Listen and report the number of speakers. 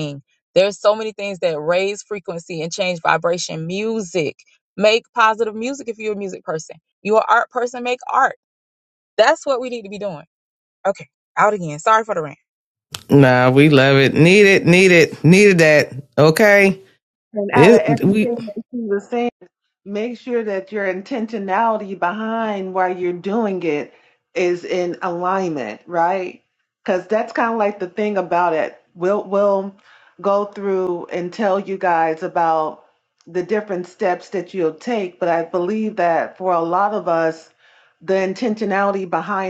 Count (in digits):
3